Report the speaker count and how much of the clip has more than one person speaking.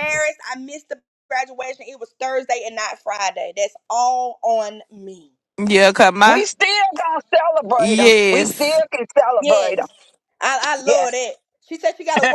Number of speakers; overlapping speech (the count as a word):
three, about 15%